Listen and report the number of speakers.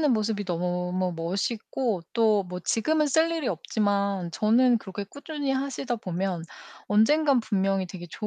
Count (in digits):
1